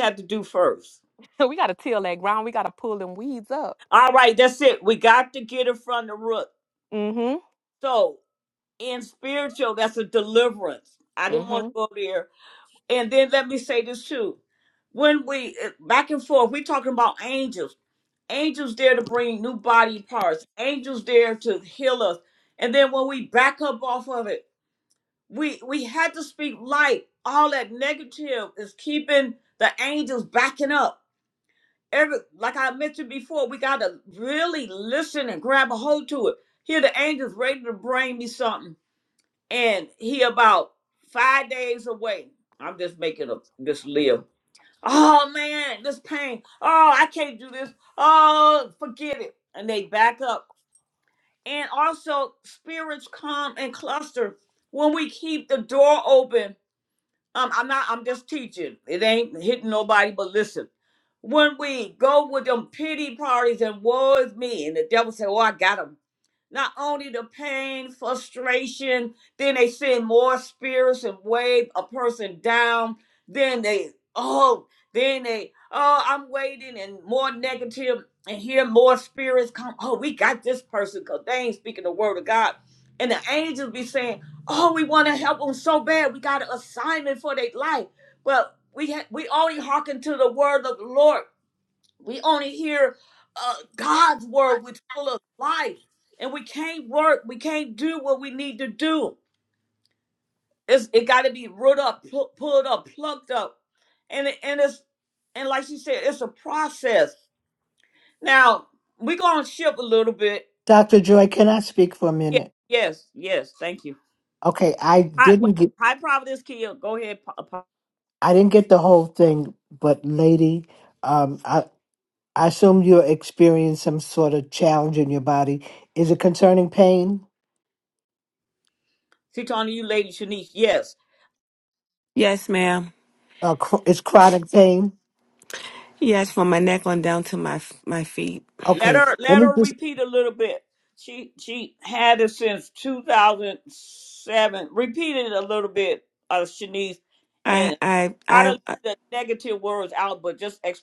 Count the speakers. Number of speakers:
4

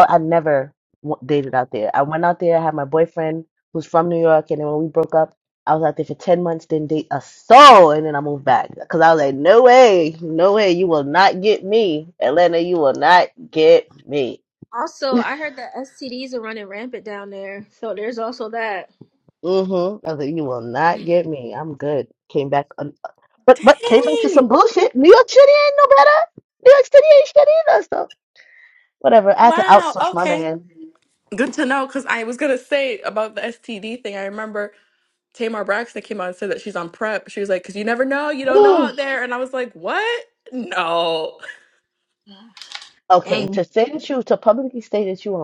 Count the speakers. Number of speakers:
3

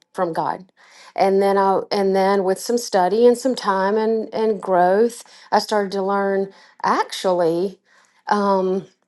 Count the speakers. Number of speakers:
1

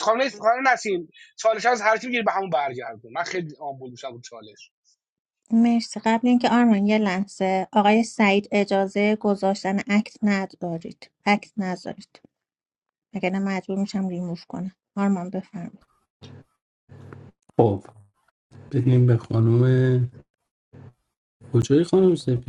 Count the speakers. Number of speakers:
3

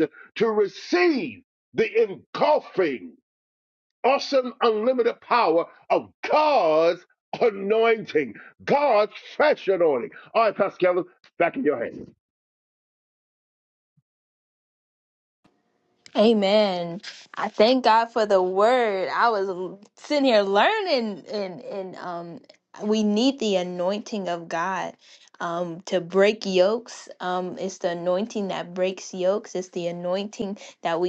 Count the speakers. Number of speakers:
2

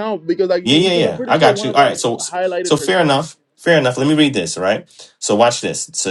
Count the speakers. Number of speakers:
2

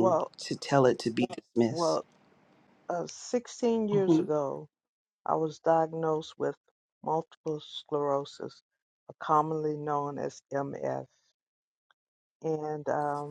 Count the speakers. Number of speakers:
2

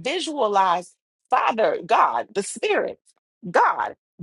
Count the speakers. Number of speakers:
1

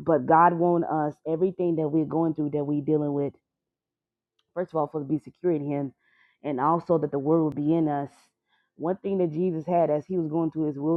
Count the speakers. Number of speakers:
1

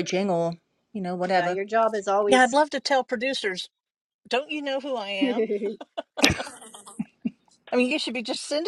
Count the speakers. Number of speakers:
3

